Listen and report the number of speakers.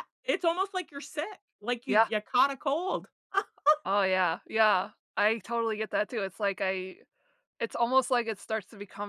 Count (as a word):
two